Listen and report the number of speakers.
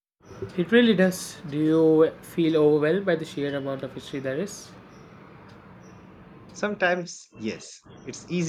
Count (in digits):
2